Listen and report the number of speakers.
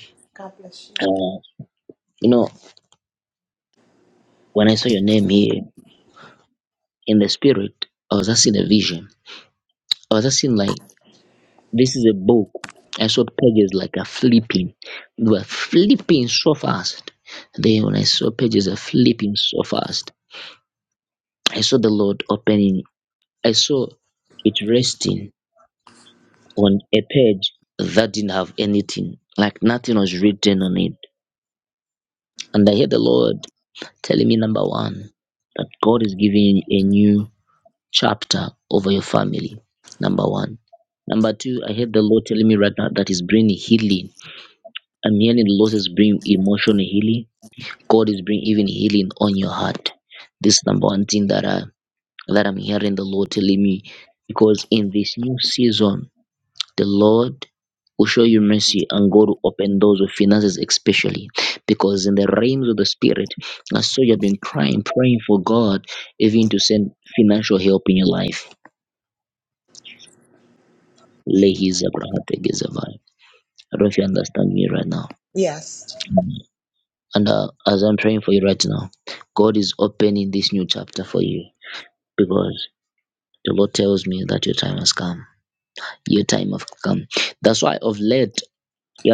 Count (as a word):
two